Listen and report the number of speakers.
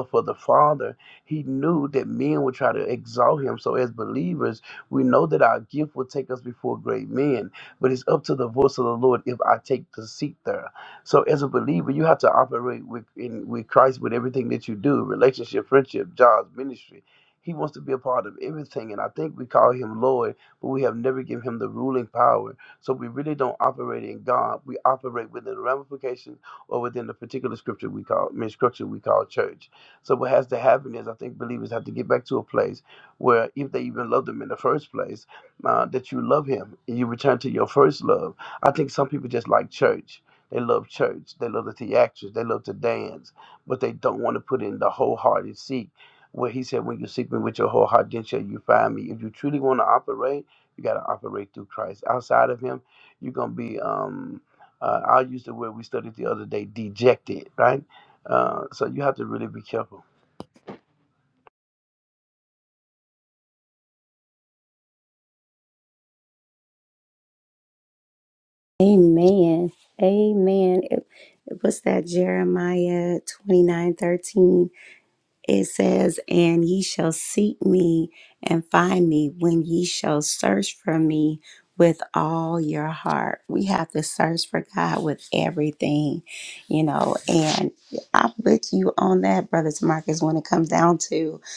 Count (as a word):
two